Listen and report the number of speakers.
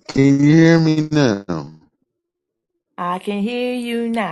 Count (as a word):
two